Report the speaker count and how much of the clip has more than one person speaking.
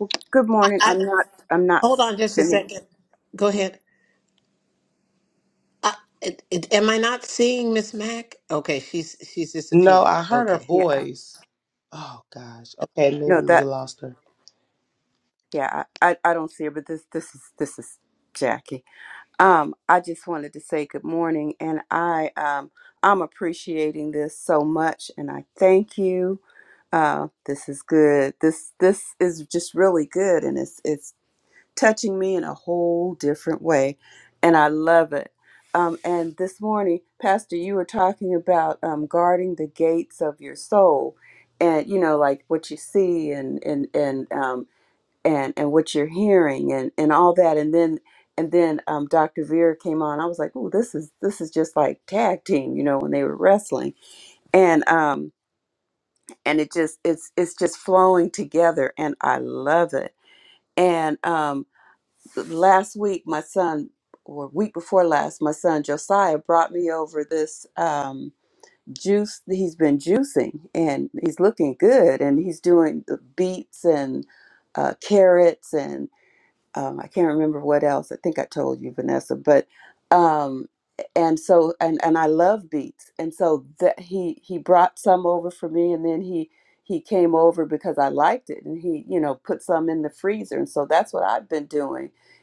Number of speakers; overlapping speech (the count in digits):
3, about 2%